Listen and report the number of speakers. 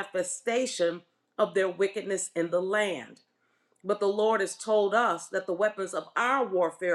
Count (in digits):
1